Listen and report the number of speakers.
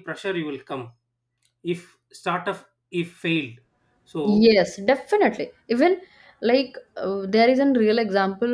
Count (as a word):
two